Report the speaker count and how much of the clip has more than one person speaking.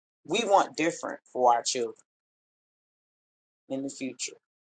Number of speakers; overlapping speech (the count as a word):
one, no overlap